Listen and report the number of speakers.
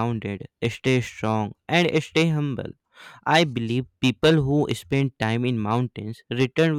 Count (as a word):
one